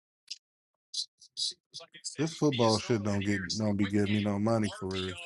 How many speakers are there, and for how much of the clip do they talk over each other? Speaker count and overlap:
1, no overlap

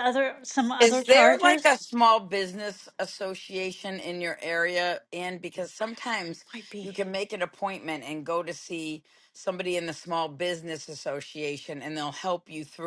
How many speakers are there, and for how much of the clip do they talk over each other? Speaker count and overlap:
2, about 6%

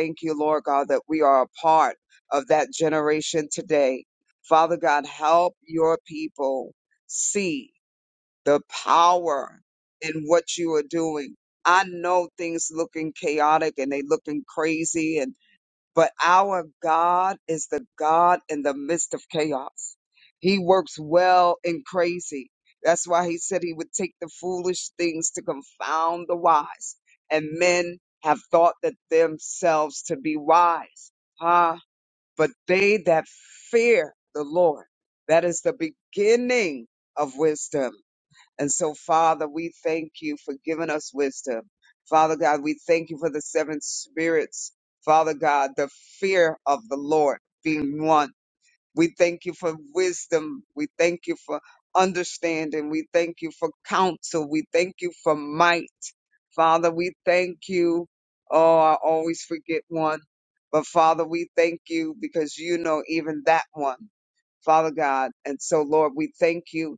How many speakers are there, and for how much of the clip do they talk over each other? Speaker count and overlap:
1, no overlap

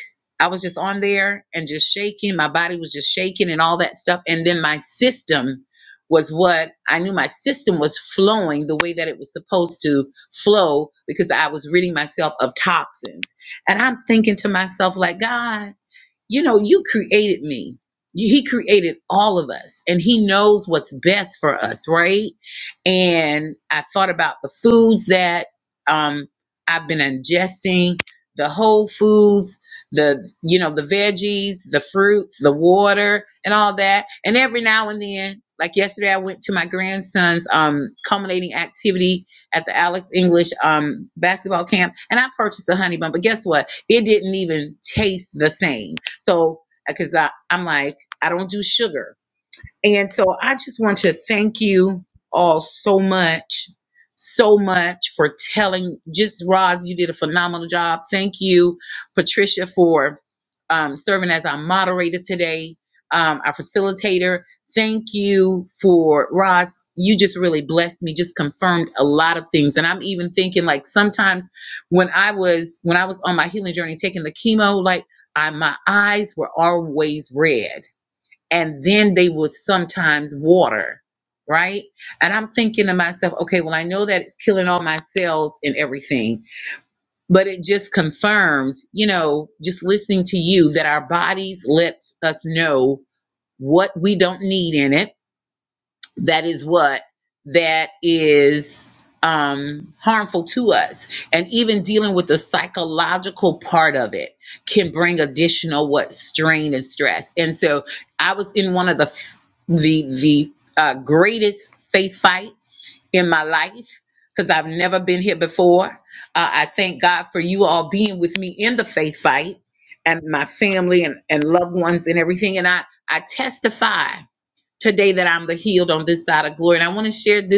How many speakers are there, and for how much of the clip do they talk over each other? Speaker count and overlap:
1, no overlap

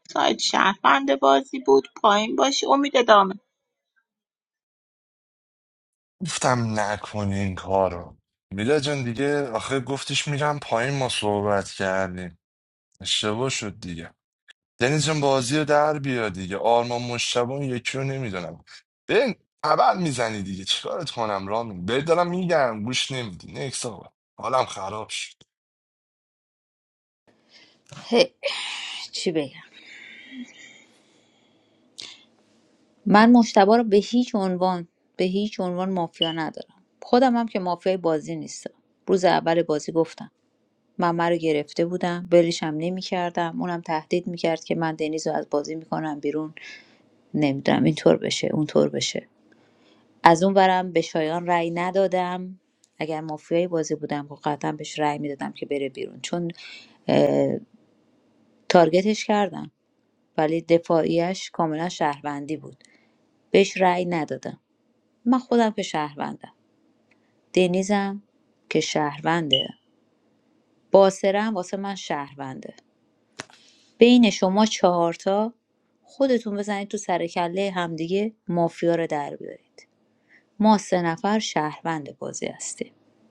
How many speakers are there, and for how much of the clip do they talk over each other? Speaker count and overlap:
3, no overlap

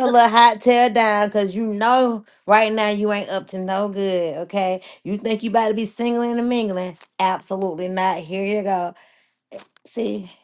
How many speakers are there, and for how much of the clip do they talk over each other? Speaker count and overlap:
1, no overlap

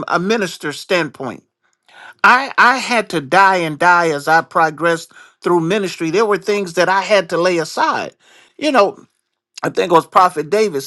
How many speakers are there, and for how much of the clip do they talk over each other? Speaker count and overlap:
1, no overlap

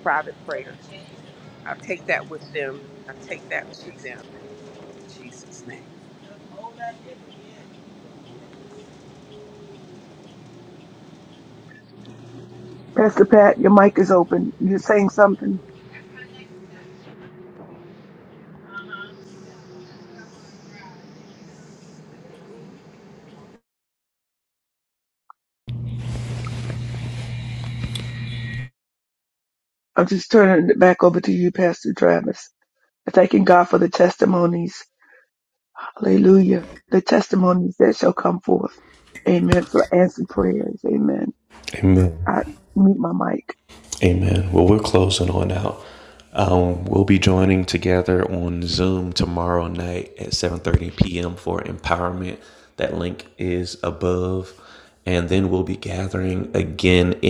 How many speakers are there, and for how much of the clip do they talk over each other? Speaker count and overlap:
3, under 1%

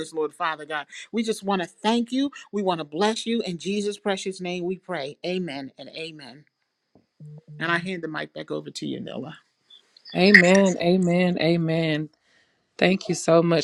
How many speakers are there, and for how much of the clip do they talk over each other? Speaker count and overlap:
2, no overlap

